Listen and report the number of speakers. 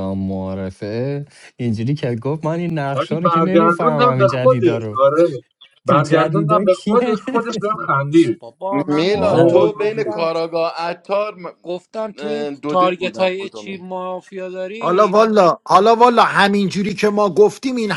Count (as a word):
five